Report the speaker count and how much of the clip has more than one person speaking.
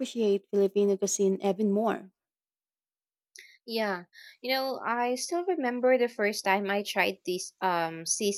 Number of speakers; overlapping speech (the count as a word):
two, no overlap